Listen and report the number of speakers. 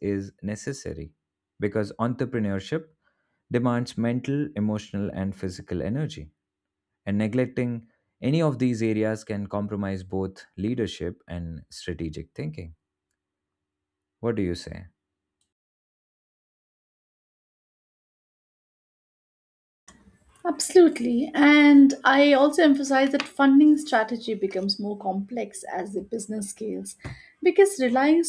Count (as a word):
two